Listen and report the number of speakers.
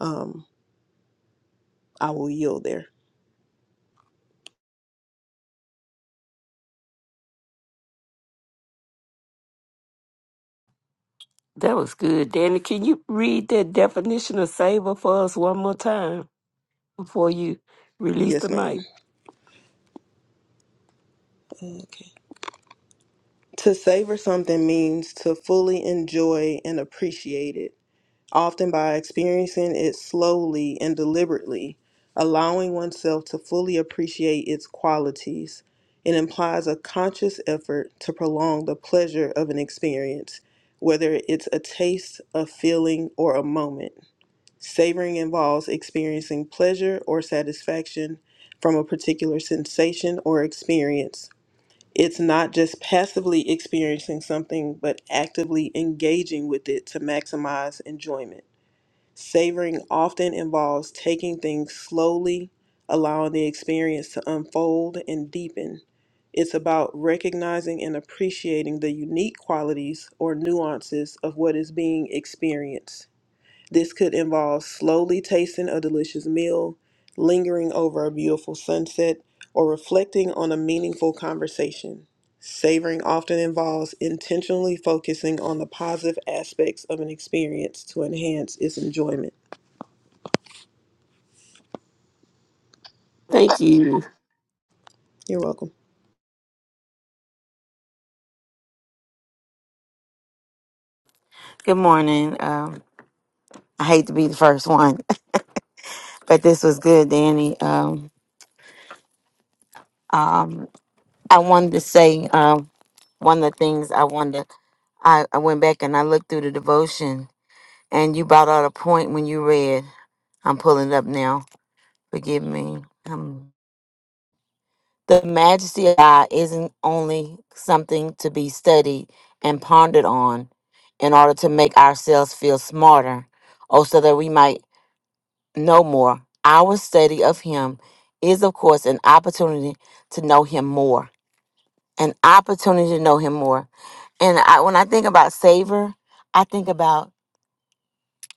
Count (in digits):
3